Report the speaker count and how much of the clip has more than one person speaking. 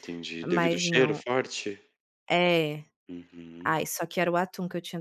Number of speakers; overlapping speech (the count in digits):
2, about 19%